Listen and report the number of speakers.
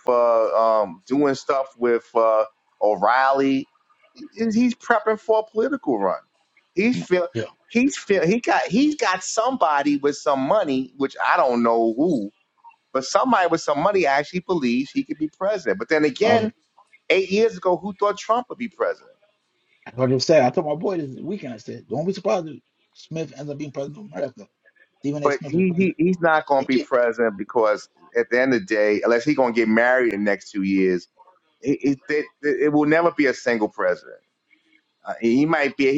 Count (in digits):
2